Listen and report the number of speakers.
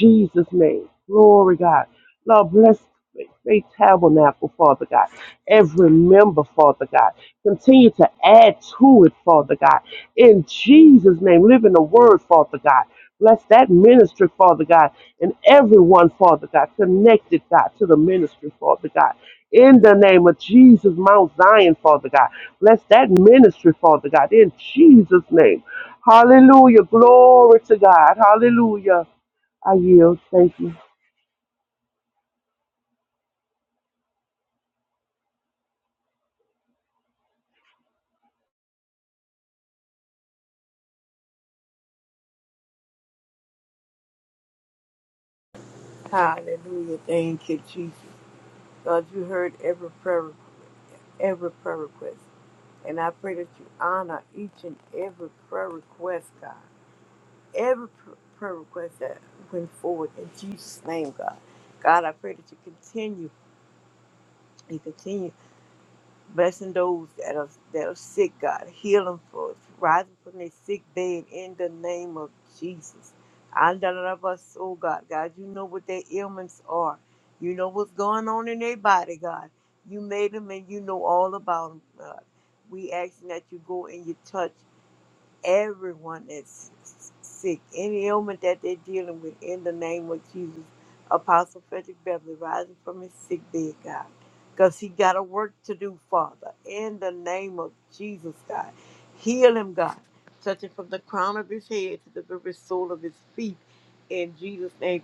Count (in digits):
2